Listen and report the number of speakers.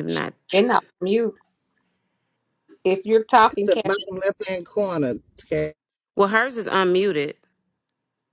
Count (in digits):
3